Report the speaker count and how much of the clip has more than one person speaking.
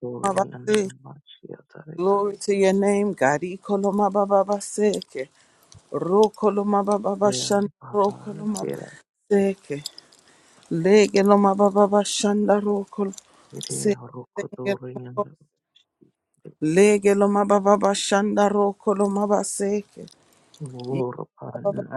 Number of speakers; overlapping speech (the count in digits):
2, about 17%